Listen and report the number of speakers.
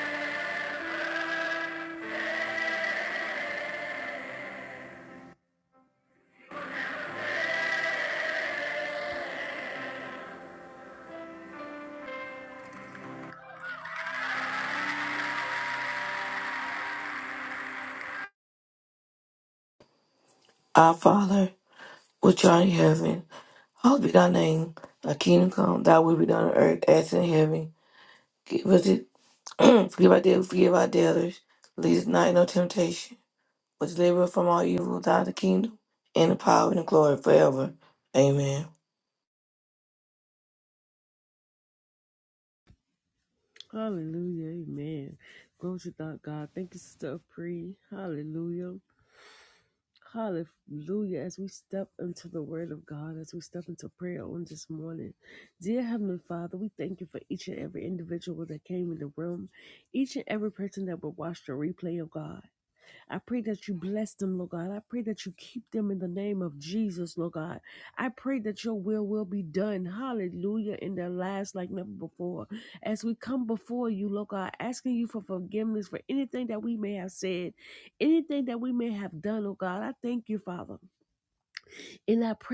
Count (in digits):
2